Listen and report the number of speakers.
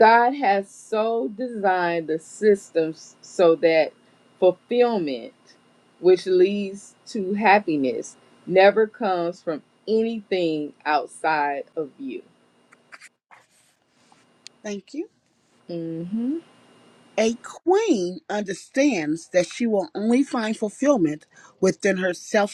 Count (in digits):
2